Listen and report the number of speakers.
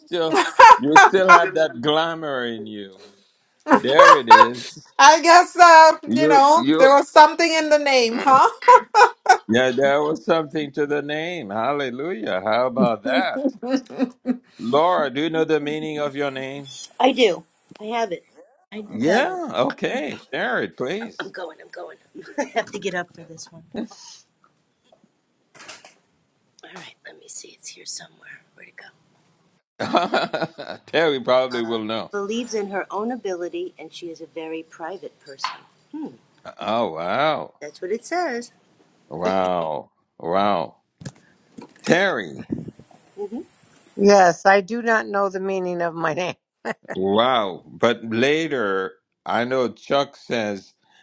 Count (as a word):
four